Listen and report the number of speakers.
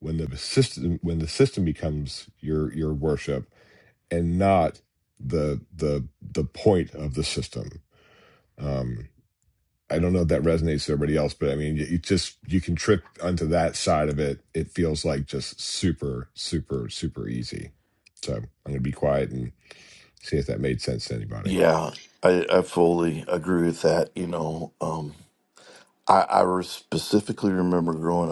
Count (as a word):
two